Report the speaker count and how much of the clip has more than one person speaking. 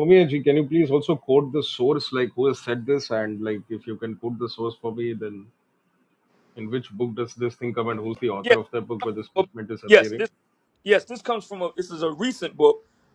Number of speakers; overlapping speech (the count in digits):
2, about 4%